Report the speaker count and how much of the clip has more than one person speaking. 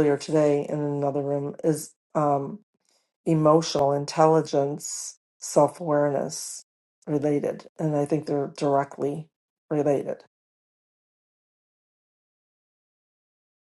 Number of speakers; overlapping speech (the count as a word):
one, no overlap